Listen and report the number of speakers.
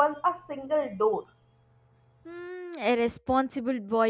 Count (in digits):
2